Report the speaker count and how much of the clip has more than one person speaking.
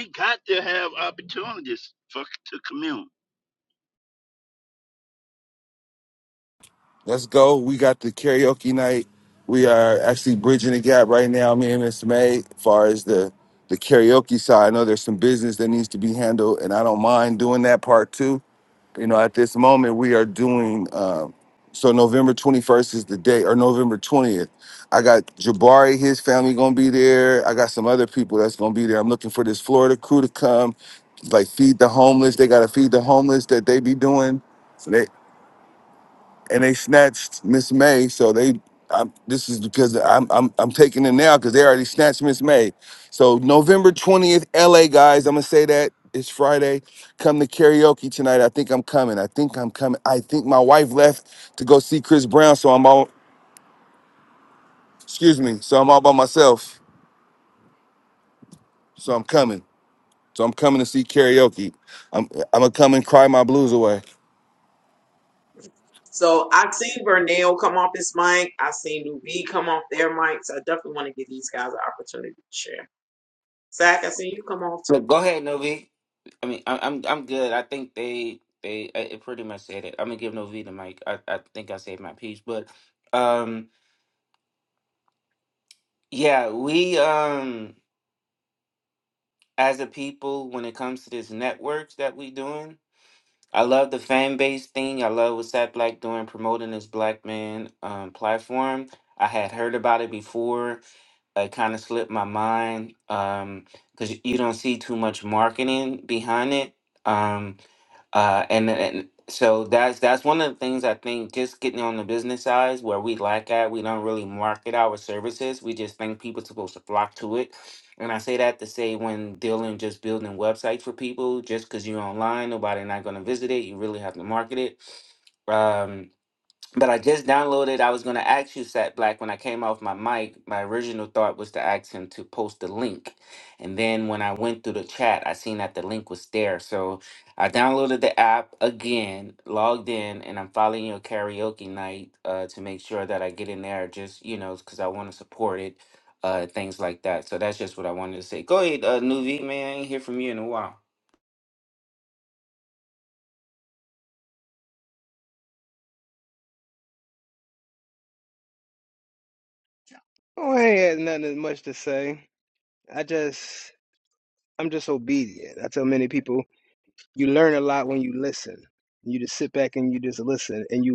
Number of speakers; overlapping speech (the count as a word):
five, no overlap